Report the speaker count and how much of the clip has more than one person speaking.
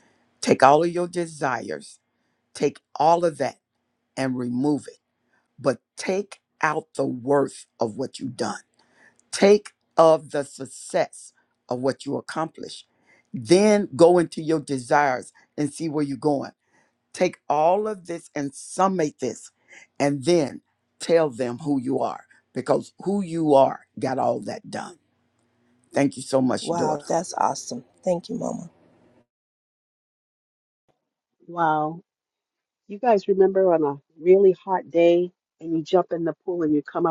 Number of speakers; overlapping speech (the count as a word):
three, about 1%